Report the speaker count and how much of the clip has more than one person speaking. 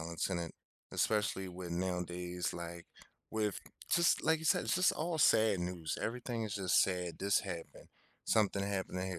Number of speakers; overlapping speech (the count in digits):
1, no overlap